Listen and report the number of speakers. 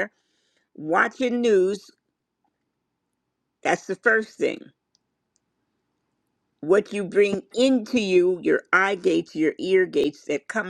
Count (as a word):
one